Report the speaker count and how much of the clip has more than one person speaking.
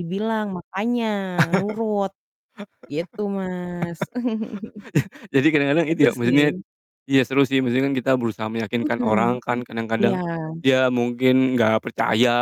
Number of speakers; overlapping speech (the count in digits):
2, about 11%